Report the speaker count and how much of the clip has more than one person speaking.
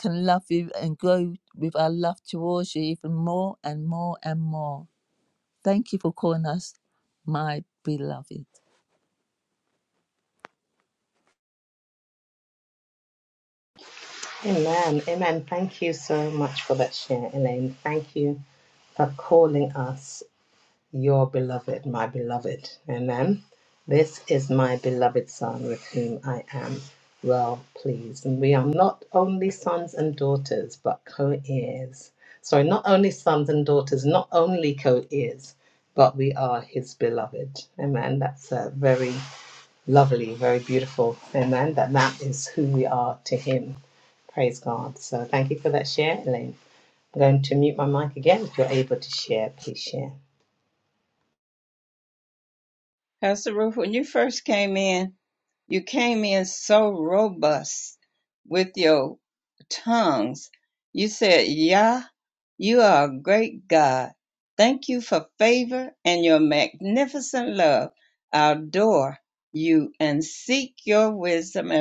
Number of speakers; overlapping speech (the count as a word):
three, no overlap